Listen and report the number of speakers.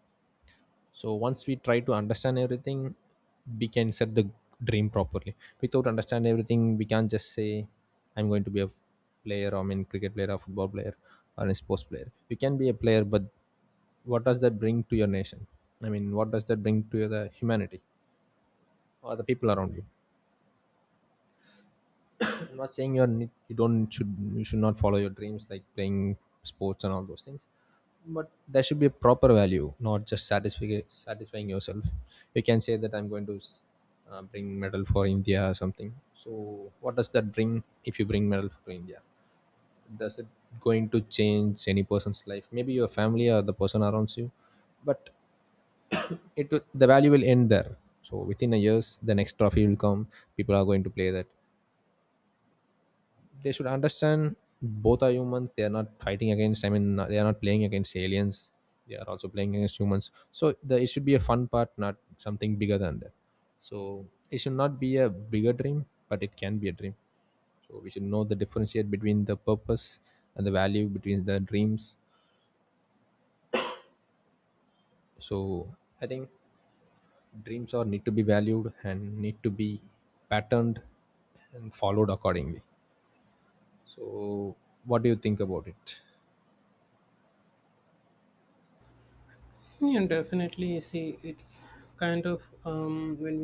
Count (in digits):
2